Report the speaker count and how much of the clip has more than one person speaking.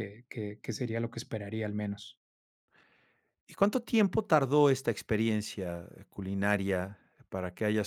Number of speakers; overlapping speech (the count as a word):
two, no overlap